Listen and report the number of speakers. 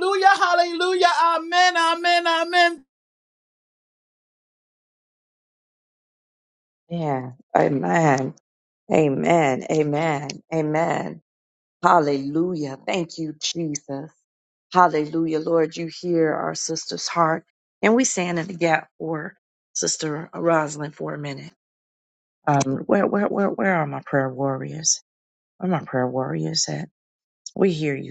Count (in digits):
2